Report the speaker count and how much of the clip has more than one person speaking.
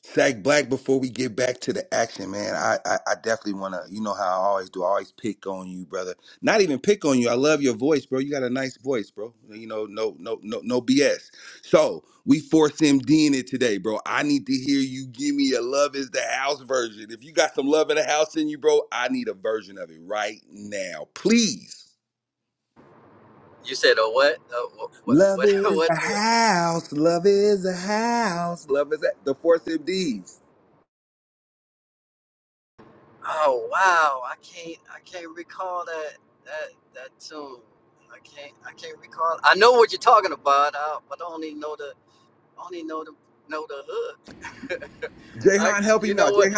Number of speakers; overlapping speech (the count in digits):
2, about 5%